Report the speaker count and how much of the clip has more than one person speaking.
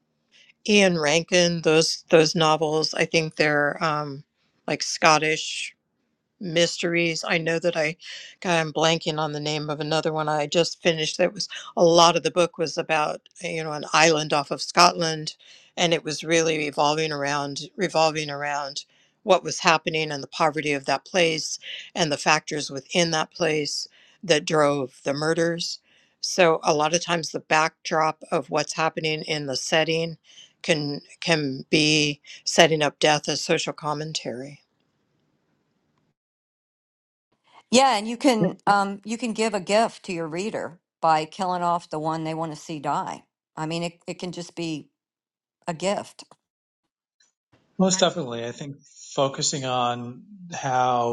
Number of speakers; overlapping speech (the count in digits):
3, no overlap